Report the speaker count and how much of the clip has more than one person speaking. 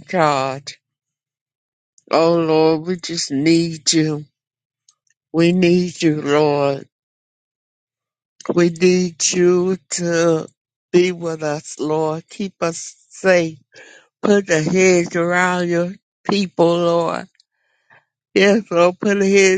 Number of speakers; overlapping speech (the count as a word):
one, no overlap